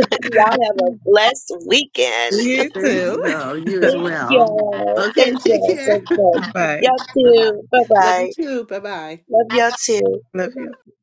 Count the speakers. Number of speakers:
three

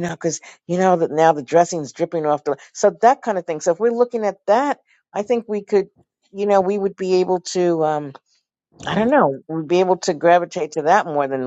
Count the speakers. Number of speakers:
one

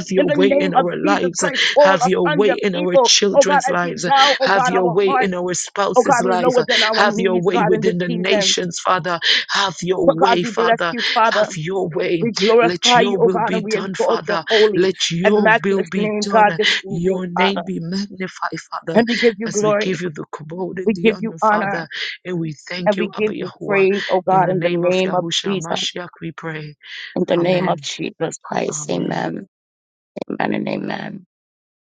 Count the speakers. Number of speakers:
two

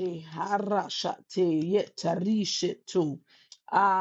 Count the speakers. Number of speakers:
one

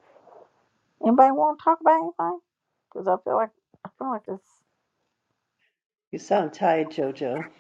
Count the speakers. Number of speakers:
two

